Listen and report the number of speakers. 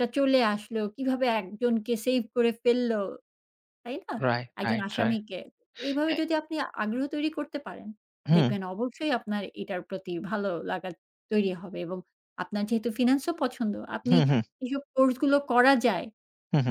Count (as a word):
two